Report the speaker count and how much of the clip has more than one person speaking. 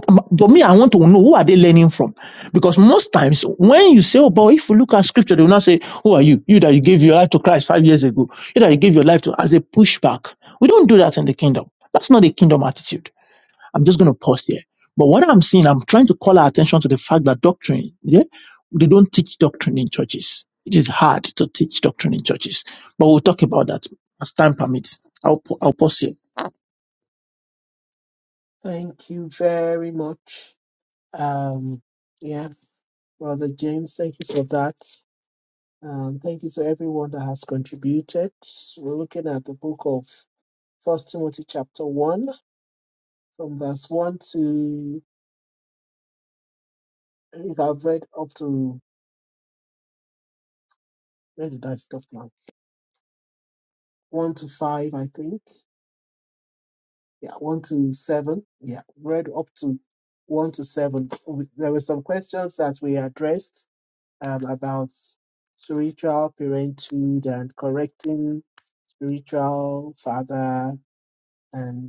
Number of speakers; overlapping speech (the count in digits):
2, no overlap